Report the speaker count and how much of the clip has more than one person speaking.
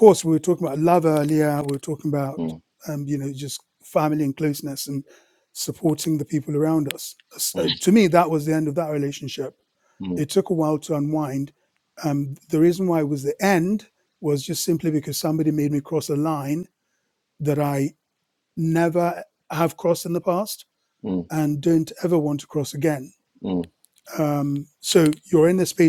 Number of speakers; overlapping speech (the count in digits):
2, about 1%